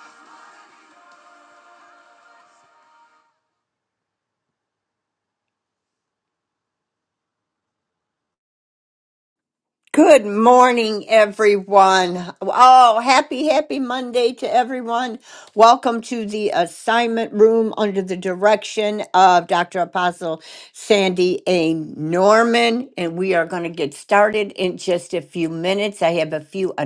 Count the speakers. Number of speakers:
1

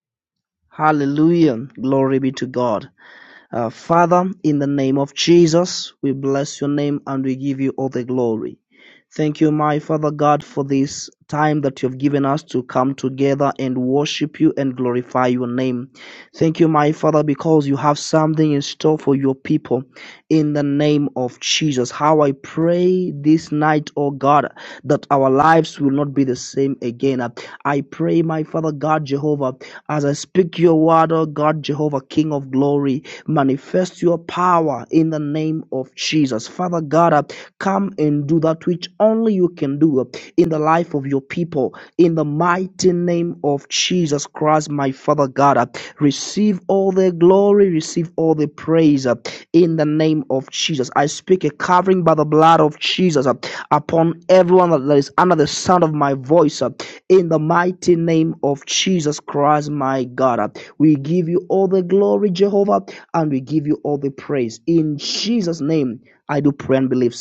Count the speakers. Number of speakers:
1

